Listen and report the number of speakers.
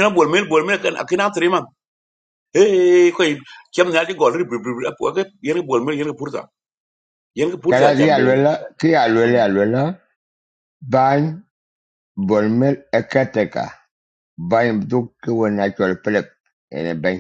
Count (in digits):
2